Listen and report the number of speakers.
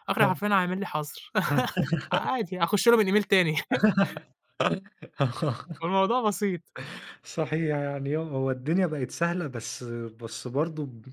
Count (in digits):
2